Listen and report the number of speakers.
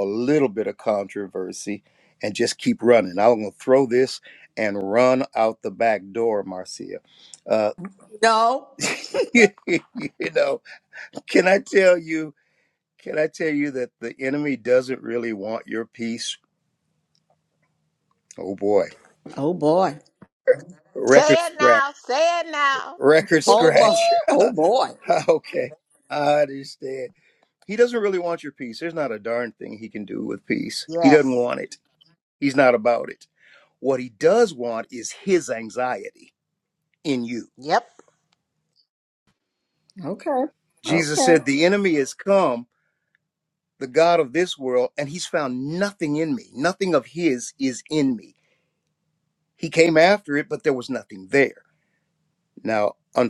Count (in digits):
3